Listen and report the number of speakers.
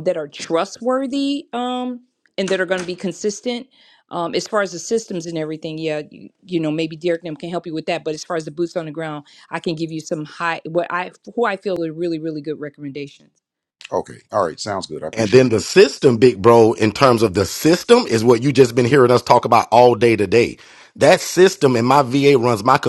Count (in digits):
3